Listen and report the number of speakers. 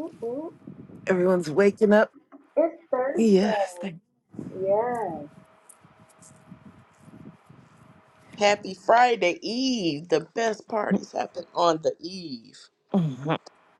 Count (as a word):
three